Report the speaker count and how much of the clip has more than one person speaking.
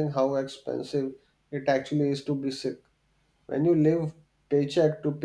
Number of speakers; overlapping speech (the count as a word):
one, no overlap